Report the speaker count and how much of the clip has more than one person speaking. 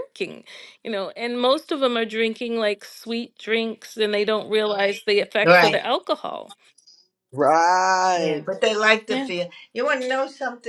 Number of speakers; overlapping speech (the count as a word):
three, about 8%